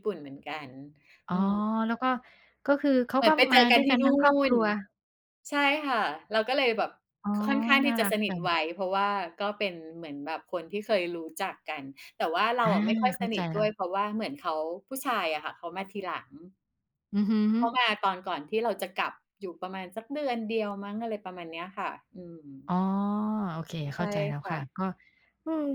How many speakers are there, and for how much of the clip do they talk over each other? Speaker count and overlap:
2, about 10%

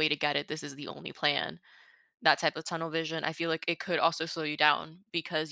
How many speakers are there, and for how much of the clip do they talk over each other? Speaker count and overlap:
1, no overlap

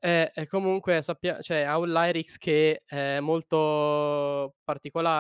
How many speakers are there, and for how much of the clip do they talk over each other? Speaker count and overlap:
1, no overlap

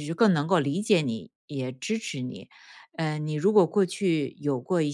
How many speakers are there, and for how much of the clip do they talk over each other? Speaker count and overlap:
1, no overlap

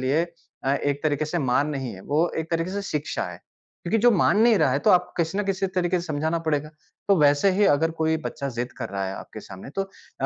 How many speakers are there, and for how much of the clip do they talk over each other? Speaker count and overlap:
1, no overlap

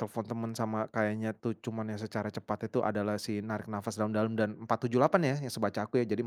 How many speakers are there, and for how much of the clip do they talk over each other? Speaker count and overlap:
1, no overlap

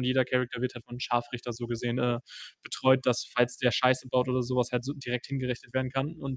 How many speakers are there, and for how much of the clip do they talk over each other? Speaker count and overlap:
1, no overlap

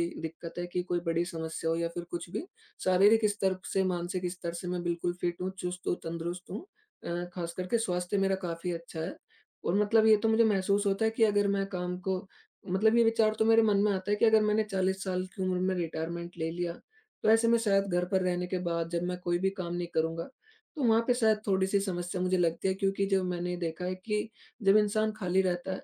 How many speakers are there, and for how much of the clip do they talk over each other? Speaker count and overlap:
1, no overlap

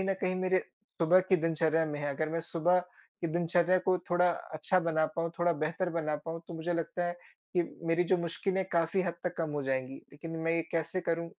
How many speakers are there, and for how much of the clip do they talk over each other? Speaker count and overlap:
1, no overlap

